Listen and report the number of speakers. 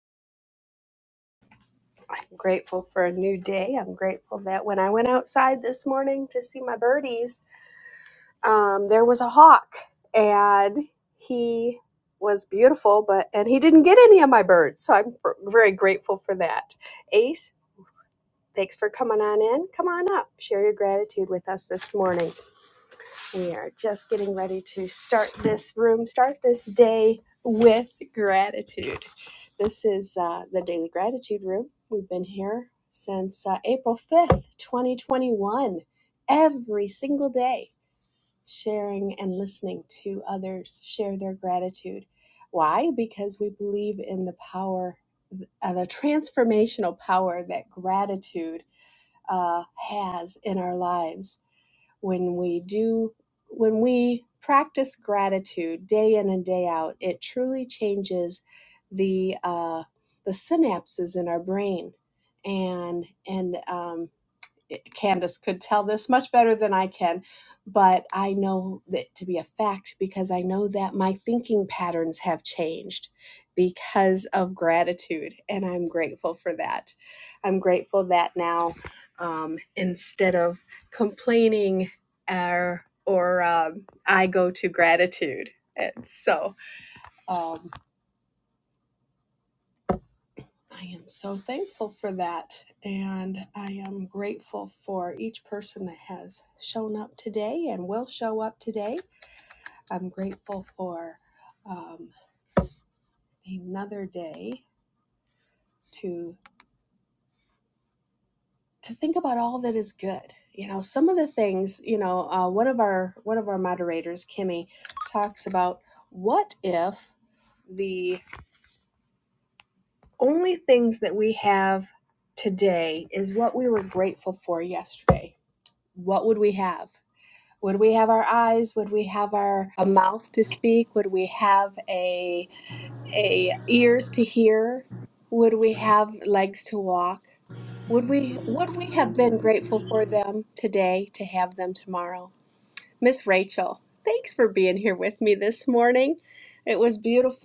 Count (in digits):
1